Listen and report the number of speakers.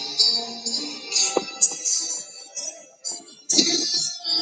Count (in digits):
0